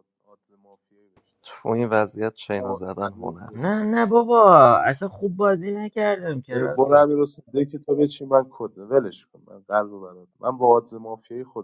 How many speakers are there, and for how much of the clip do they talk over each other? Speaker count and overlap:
3, about 12%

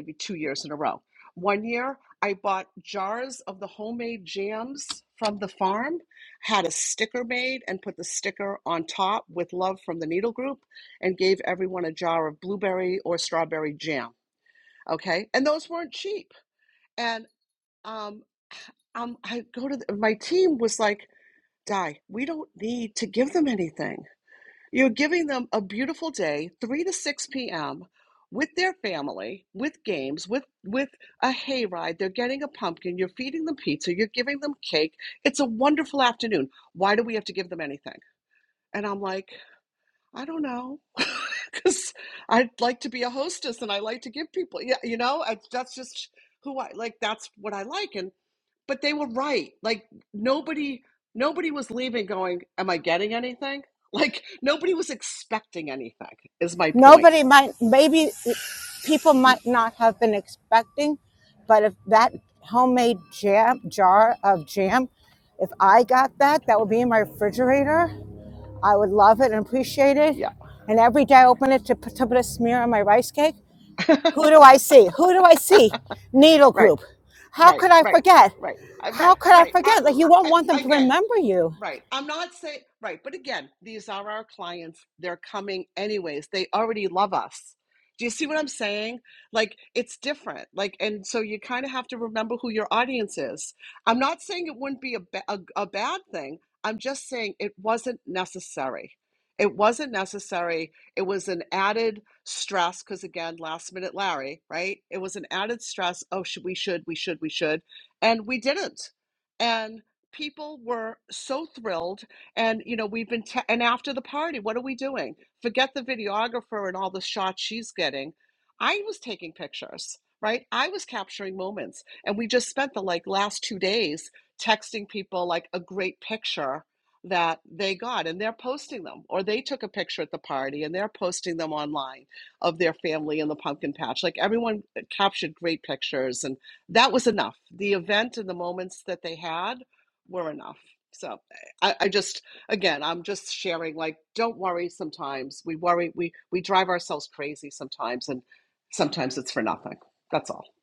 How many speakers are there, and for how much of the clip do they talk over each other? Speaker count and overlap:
2, about 2%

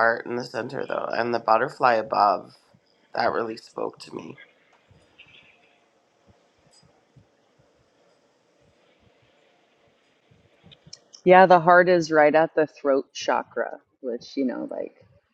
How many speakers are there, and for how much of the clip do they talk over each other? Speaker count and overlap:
2, no overlap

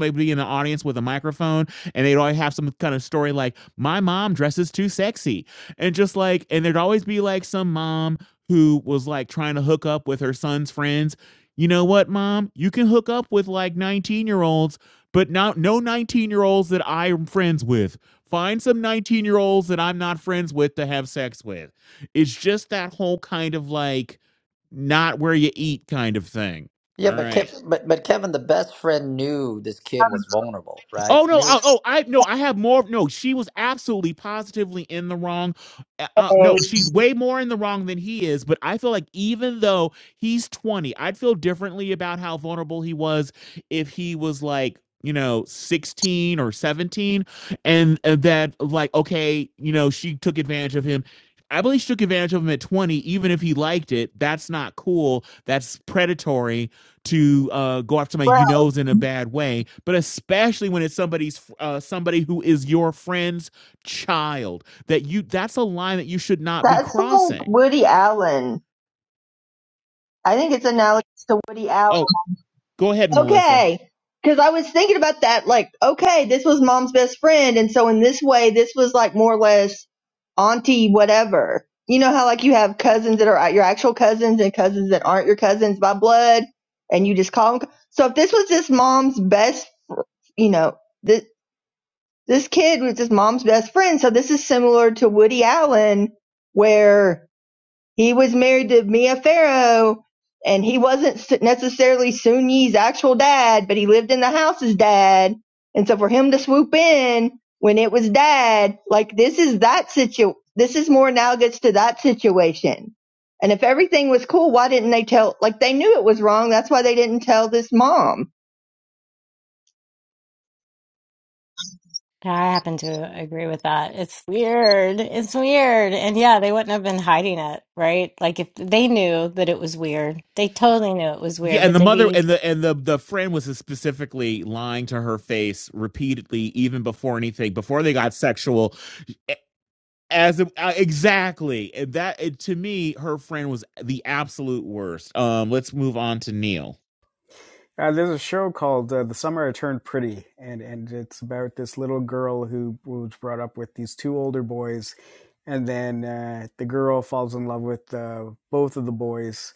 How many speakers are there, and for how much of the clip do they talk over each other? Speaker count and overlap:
5, about 2%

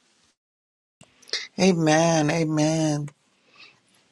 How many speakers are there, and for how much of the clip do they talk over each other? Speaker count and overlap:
1, no overlap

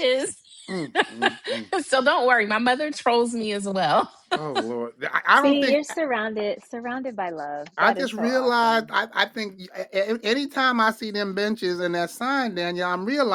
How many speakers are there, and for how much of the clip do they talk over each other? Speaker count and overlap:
3, about 11%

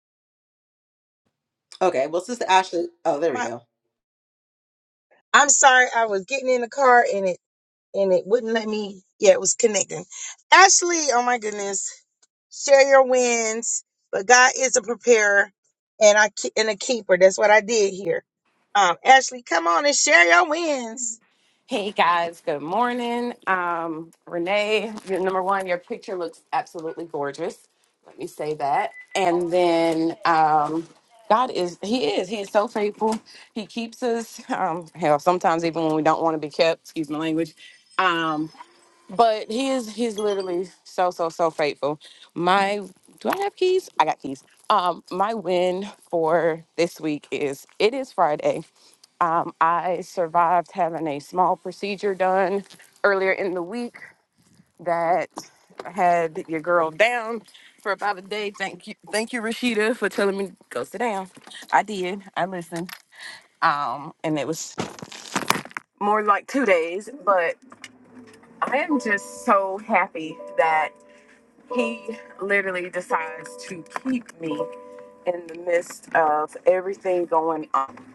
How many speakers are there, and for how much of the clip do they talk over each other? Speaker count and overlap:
3, under 1%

